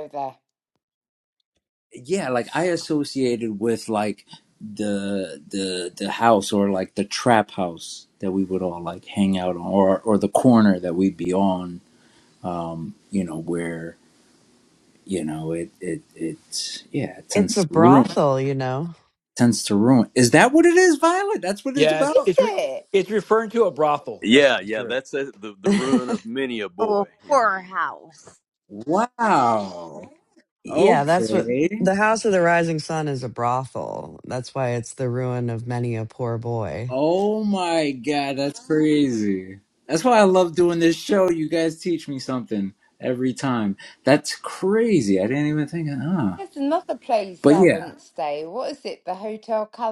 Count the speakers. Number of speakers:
six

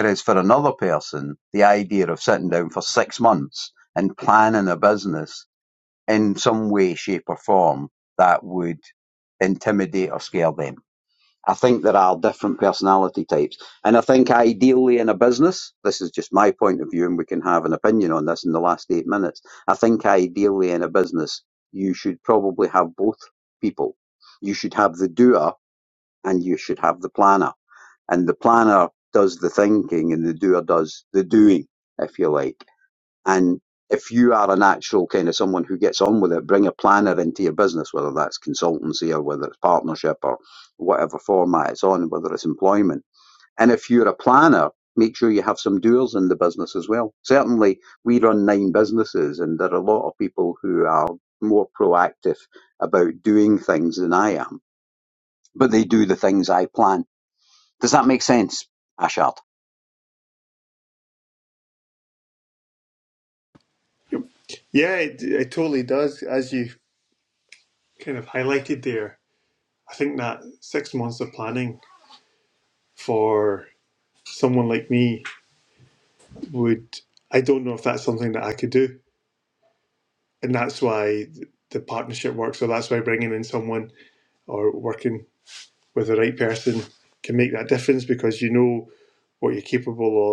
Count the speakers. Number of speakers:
two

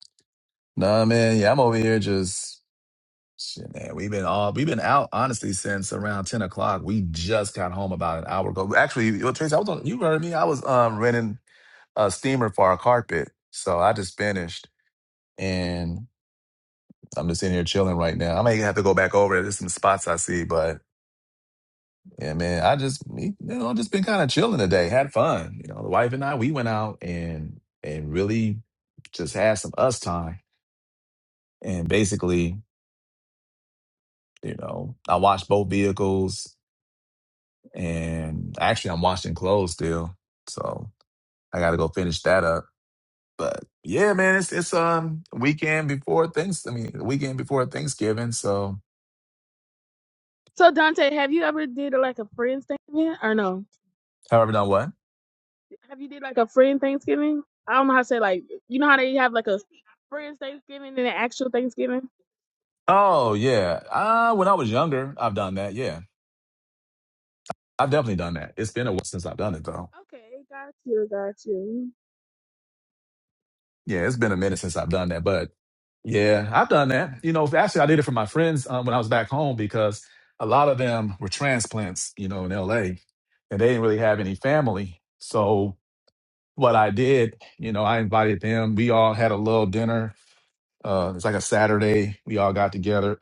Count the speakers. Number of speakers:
two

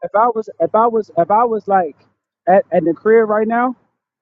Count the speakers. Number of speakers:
one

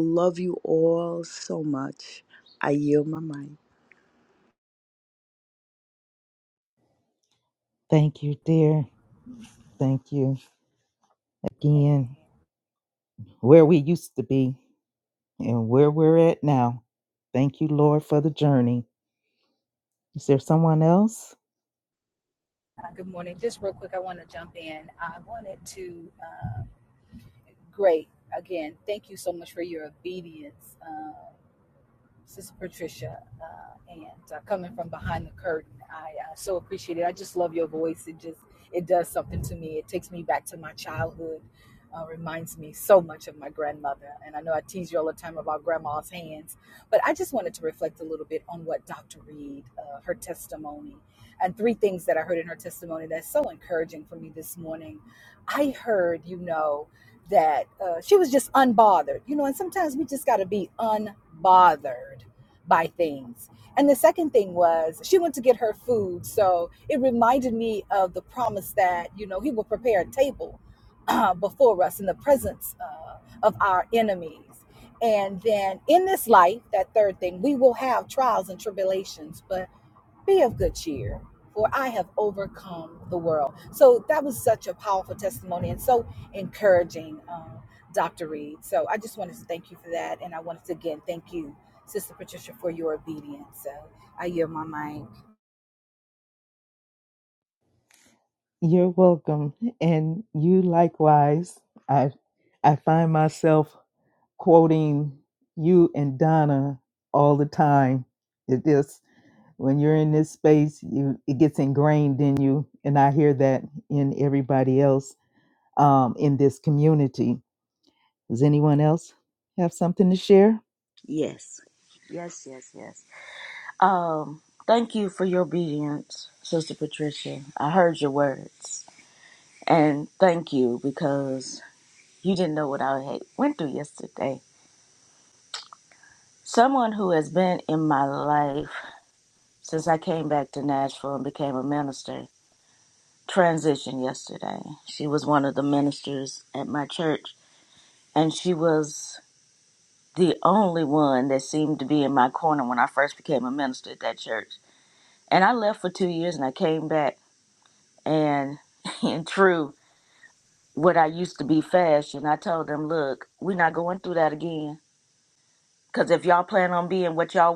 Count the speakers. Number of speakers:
four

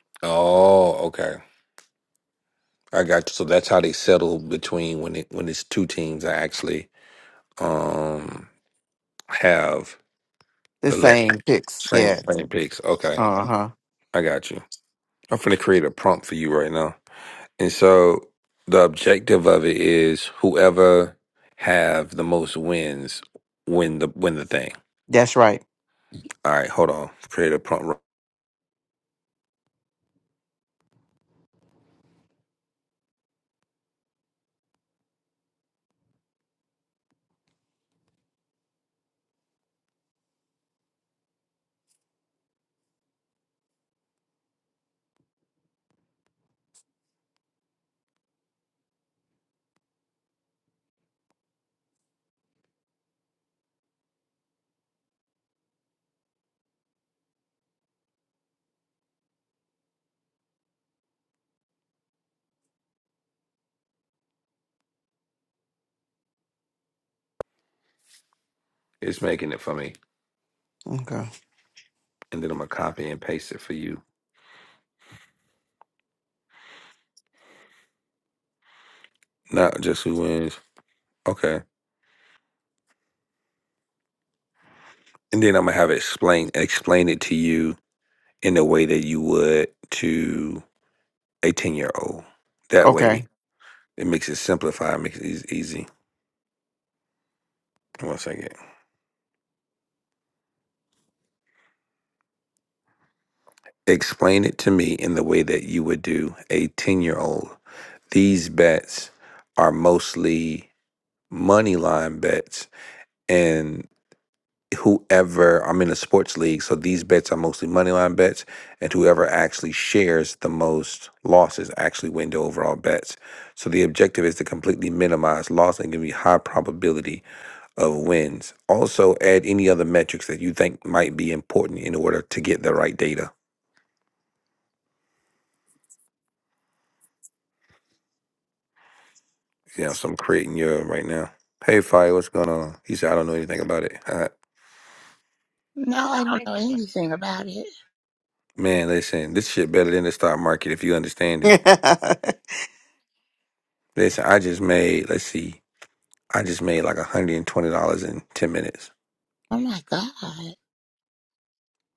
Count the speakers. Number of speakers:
three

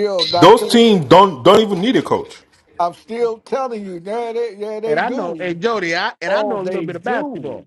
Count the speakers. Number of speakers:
three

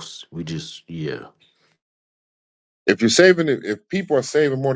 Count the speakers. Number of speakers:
two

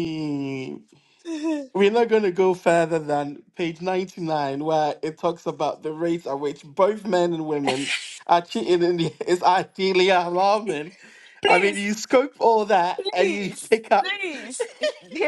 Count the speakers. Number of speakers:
two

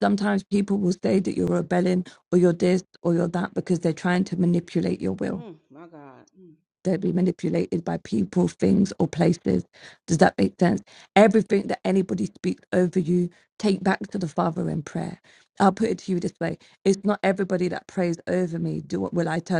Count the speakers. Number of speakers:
two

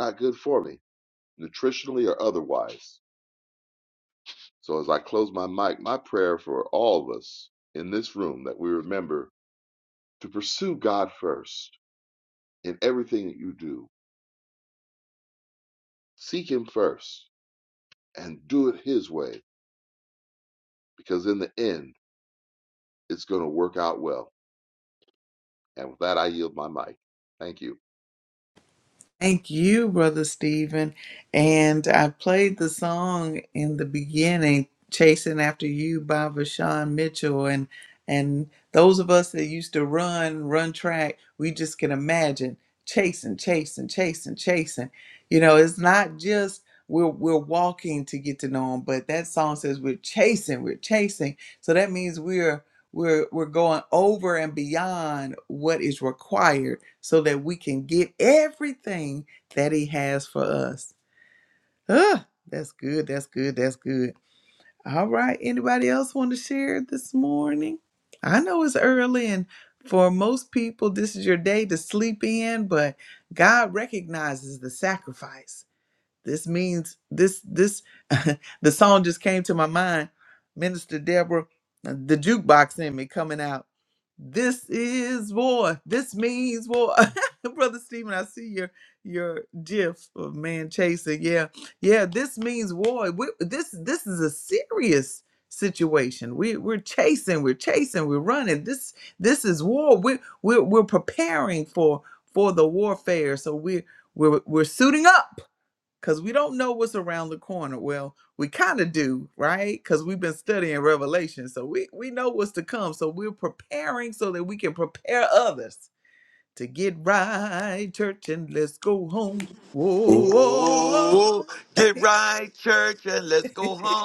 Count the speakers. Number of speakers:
three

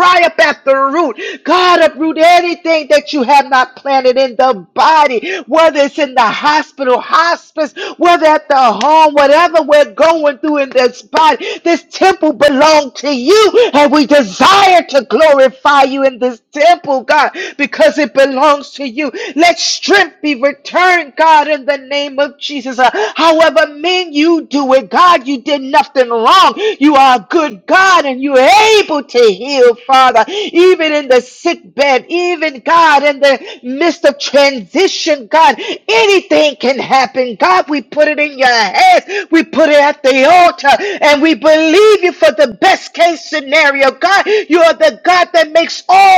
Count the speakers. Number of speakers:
one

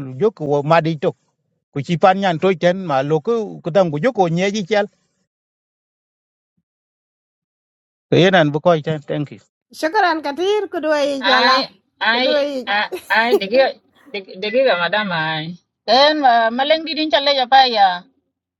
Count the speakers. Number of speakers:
three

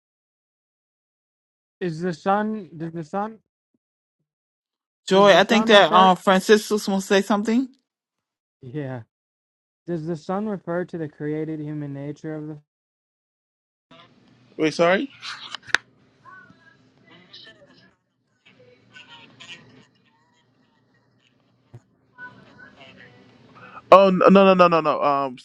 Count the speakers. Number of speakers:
three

